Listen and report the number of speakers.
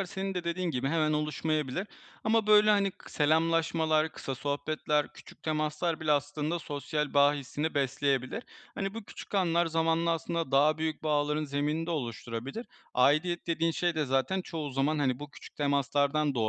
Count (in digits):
1